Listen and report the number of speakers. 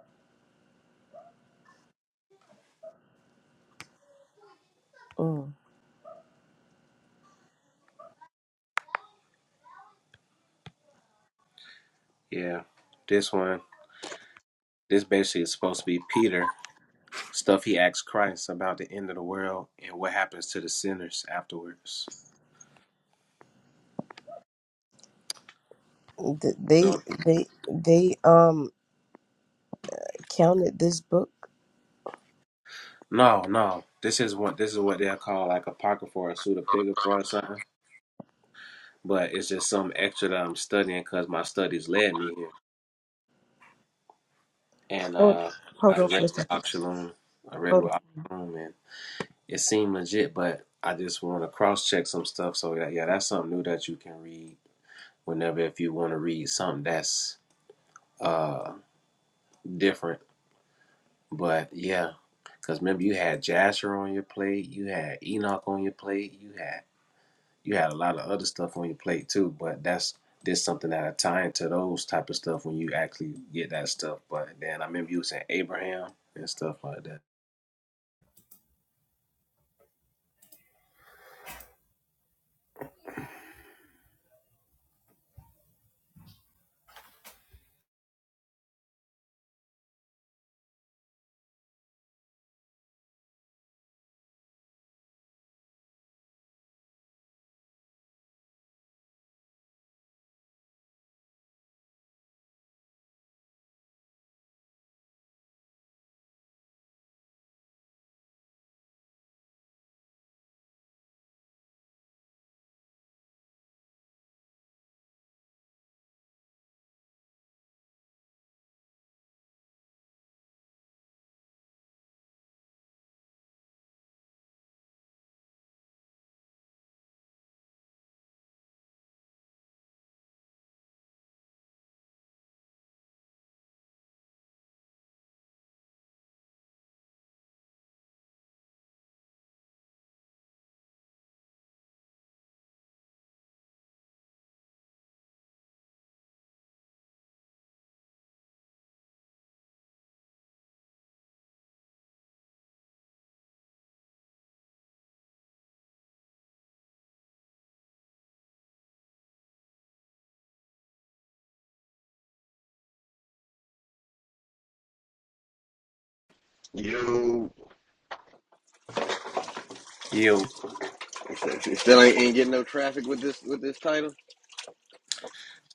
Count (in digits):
3